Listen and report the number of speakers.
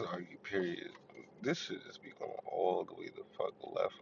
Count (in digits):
1